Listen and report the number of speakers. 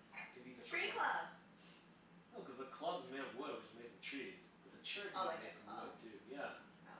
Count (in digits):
2